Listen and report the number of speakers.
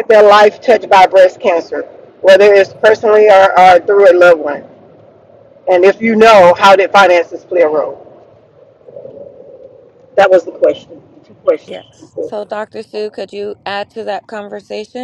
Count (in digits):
2